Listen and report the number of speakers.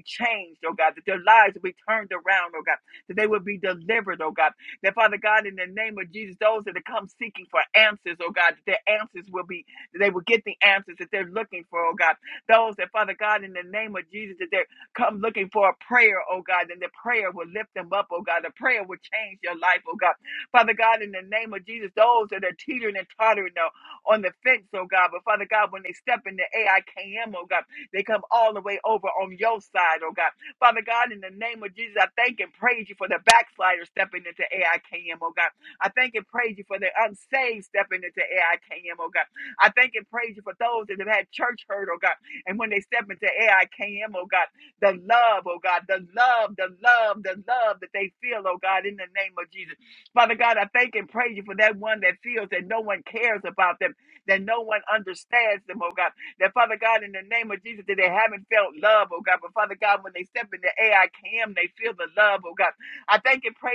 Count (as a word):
one